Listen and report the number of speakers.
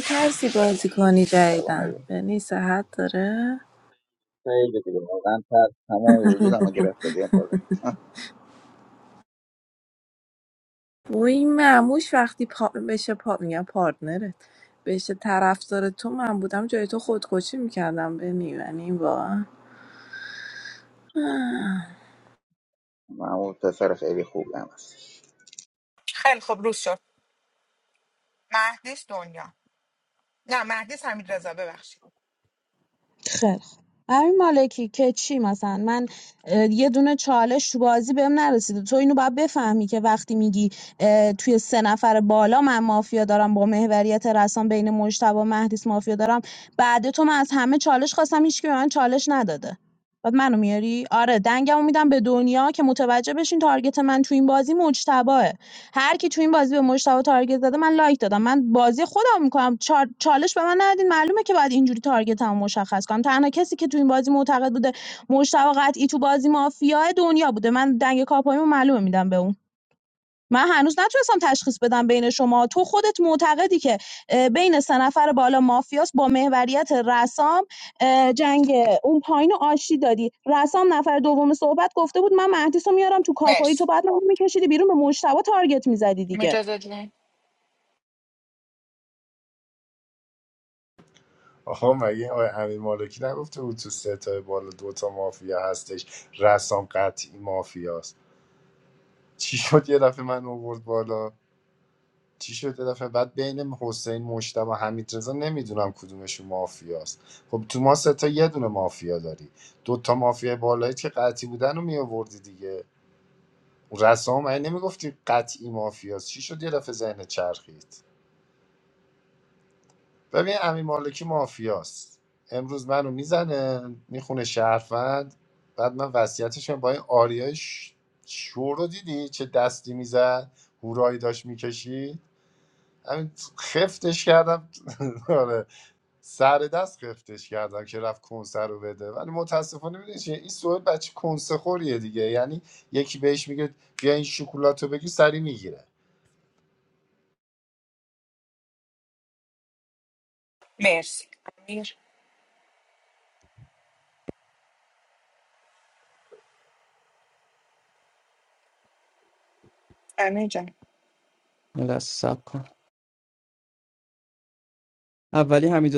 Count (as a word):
six